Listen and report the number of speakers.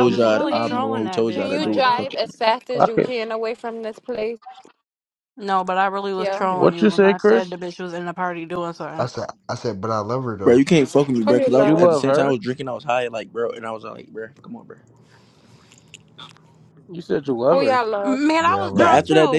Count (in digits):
5